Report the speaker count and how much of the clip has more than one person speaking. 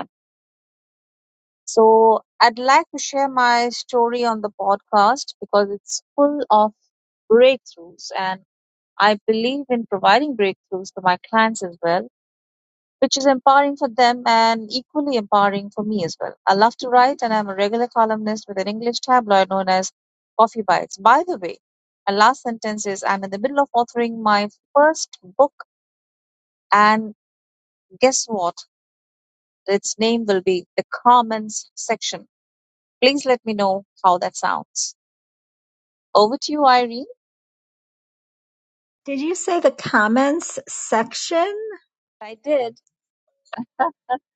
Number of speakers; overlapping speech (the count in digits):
2, no overlap